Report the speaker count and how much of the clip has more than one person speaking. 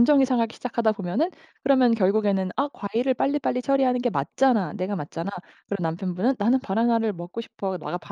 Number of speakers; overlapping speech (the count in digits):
1, no overlap